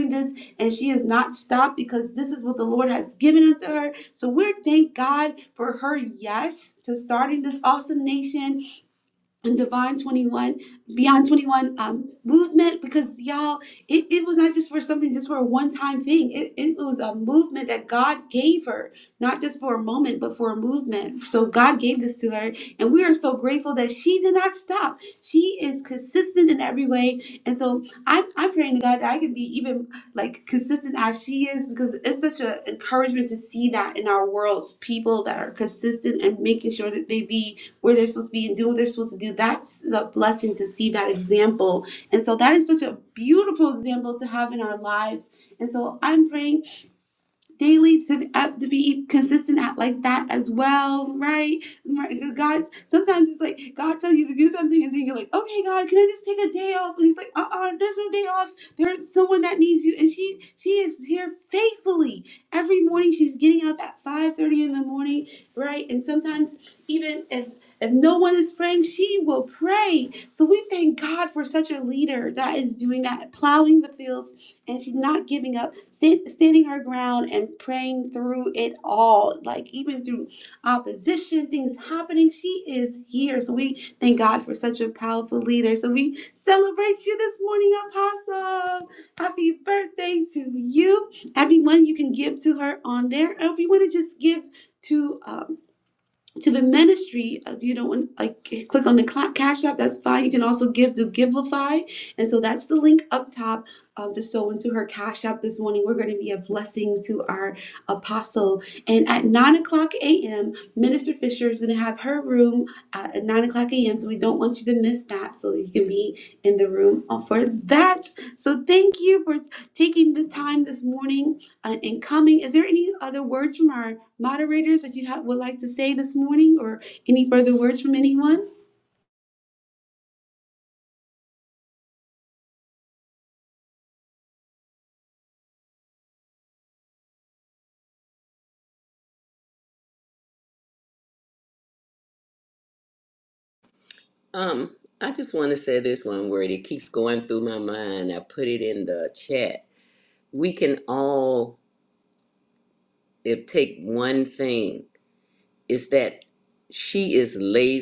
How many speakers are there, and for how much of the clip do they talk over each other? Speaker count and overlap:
2, no overlap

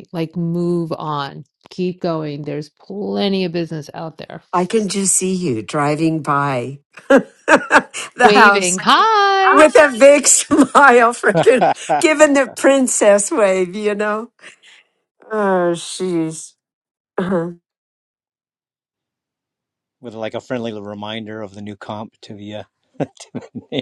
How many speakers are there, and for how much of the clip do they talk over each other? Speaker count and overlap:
3, about 3%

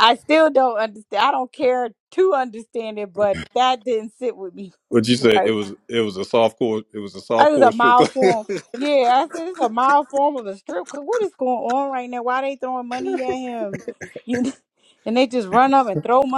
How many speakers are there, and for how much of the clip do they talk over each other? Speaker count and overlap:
2, about 7%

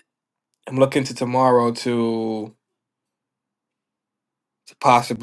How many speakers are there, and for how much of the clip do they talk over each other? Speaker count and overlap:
1, no overlap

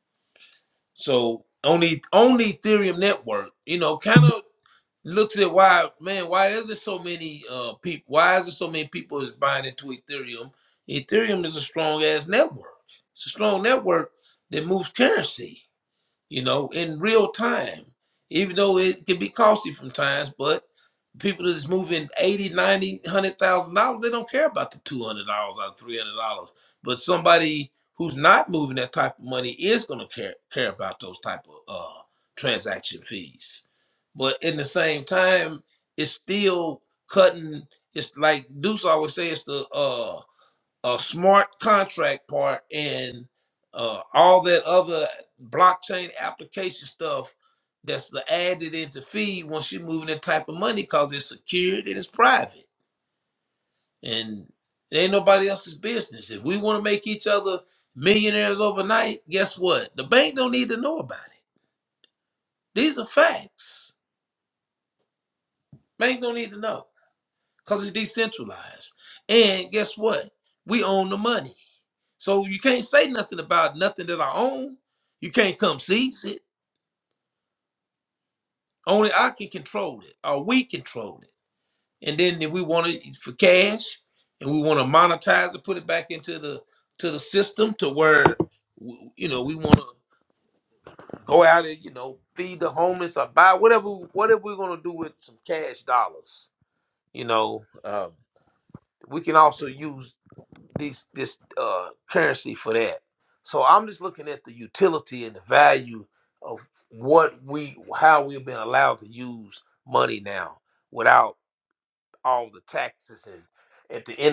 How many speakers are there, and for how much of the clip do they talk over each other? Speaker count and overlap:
1, no overlap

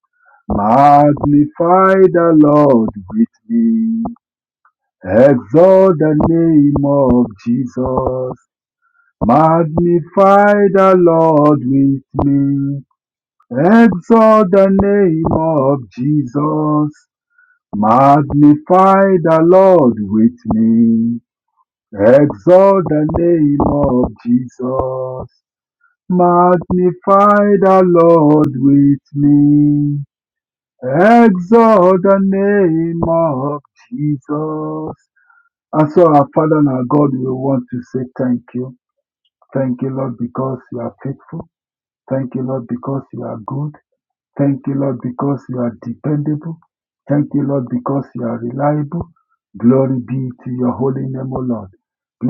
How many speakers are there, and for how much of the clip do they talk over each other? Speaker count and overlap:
1, no overlap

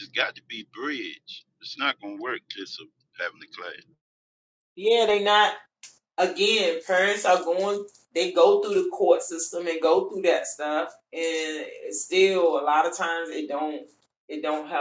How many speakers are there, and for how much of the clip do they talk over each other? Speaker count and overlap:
2, no overlap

